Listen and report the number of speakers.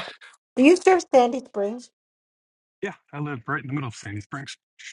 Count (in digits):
2